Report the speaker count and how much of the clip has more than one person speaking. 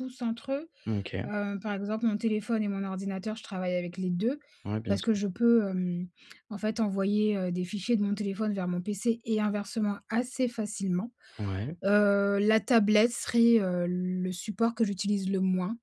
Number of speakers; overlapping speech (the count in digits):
2, about 1%